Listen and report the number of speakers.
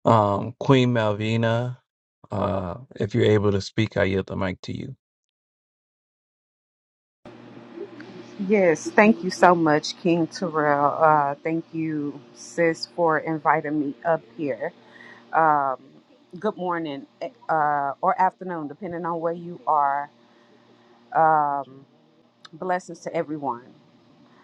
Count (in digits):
2